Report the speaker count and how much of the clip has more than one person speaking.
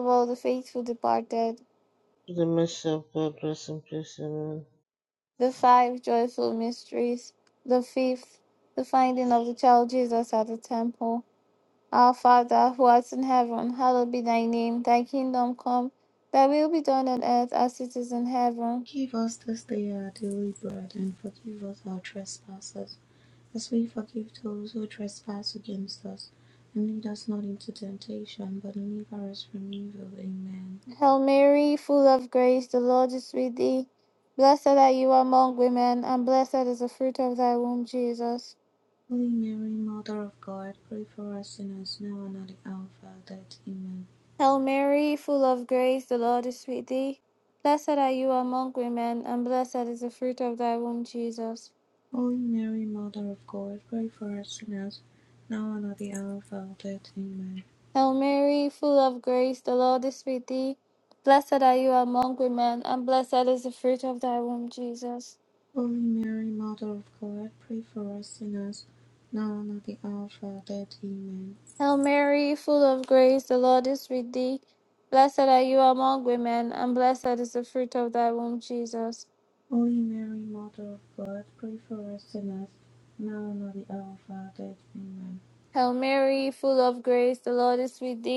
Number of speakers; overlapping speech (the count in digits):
3, no overlap